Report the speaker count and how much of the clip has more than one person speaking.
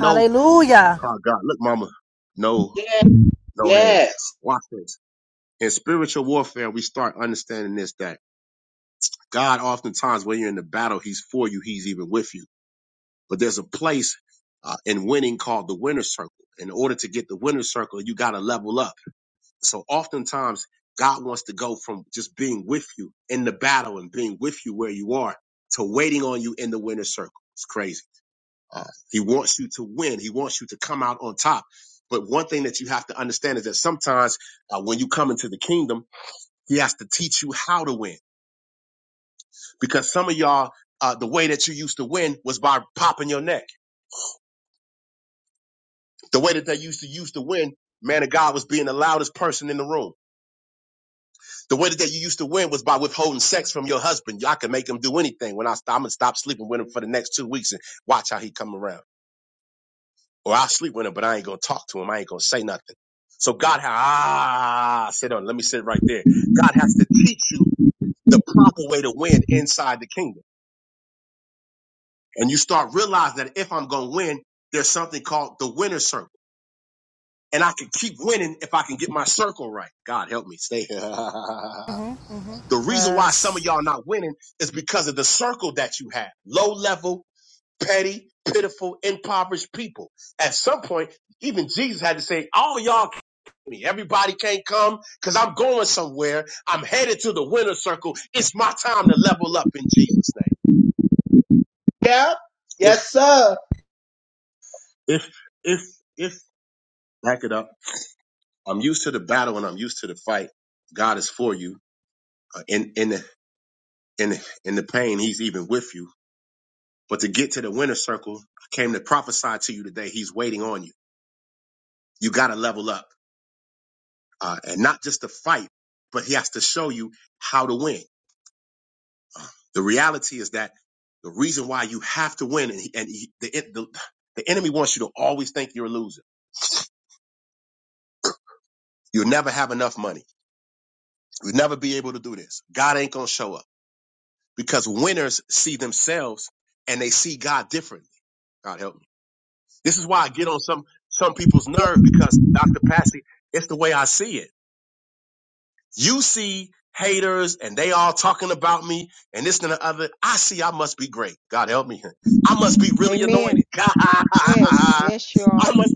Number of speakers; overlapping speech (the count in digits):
4, about 2%